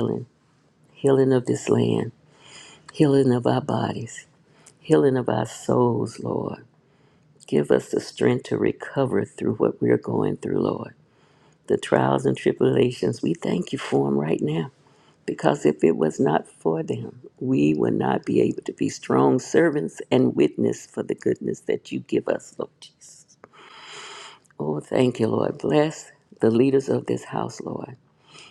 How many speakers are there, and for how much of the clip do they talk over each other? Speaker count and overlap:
one, no overlap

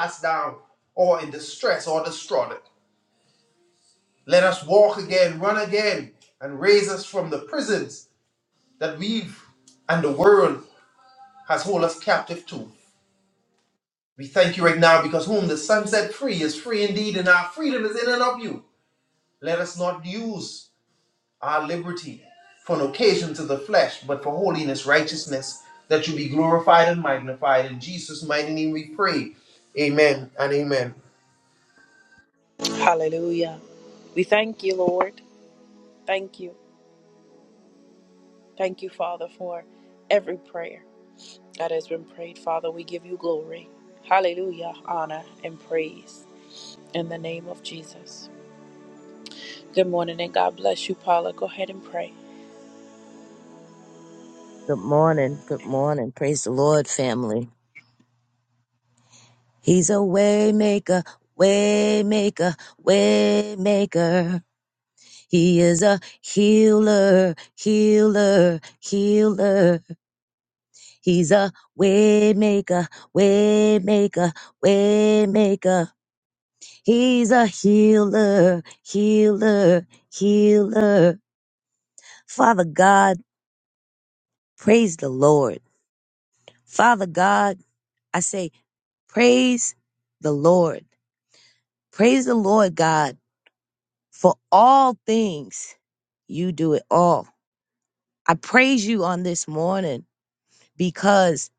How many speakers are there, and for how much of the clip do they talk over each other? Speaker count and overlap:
three, no overlap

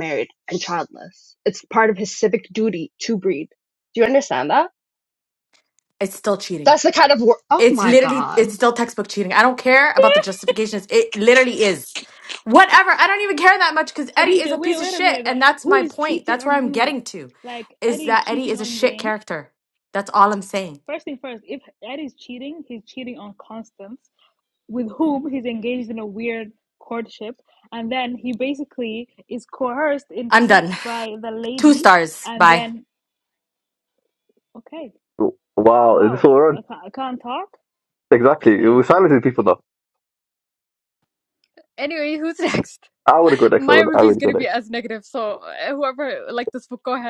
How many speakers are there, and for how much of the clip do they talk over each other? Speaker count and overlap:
five, about 18%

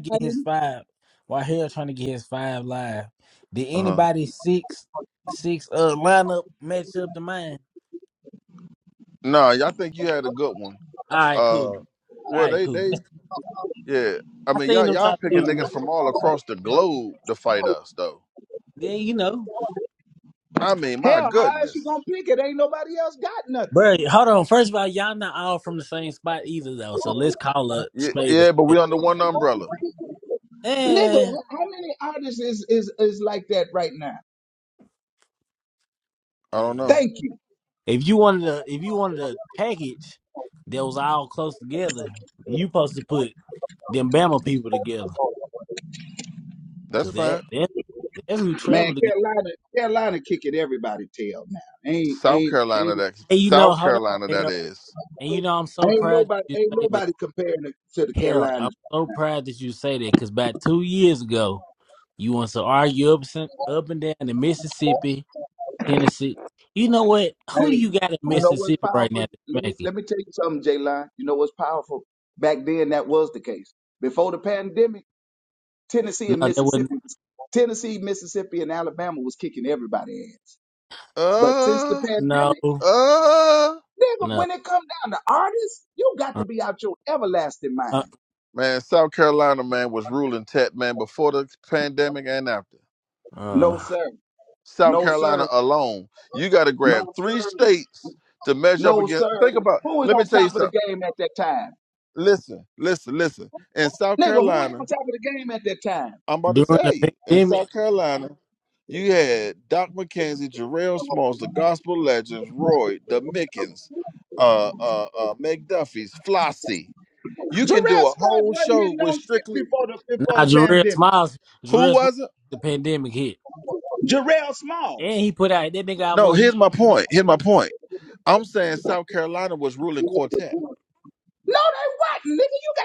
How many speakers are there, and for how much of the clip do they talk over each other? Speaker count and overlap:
three, about 17%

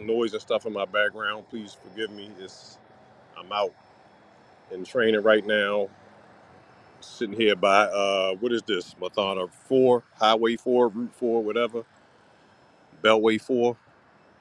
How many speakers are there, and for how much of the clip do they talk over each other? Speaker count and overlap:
one, no overlap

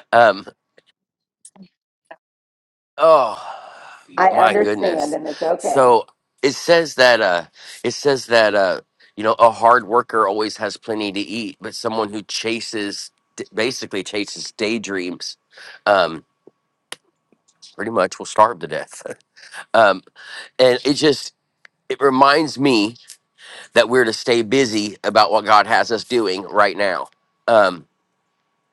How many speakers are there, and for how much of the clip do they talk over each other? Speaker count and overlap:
two, about 3%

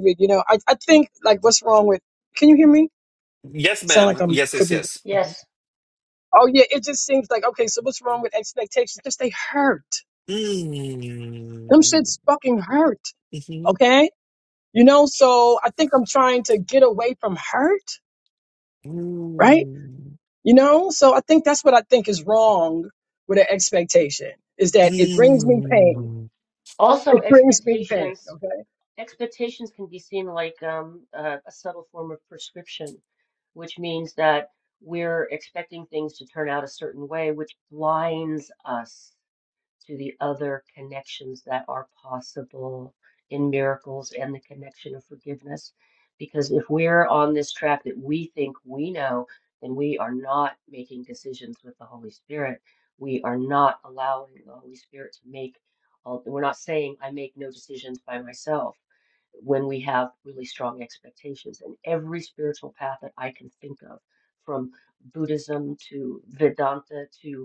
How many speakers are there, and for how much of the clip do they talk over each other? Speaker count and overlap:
three, about 5%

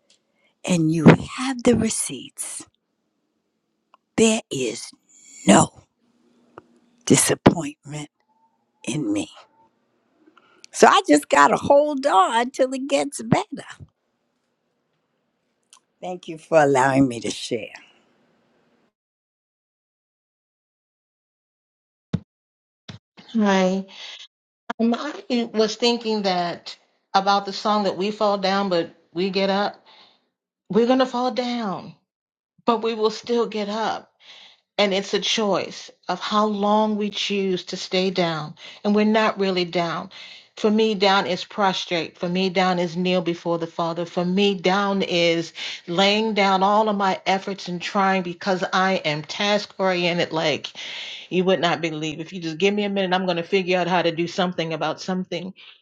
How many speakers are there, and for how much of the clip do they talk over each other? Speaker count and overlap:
two, no overlap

